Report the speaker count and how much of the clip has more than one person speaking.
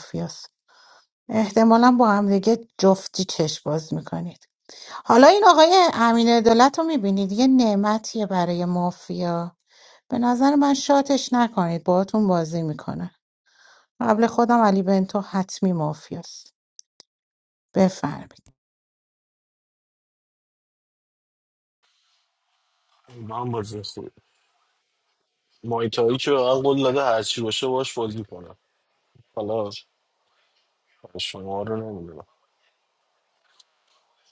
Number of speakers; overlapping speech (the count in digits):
2, no overlap